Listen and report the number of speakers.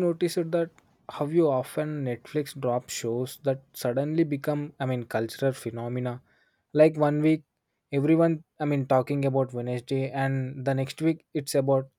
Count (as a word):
one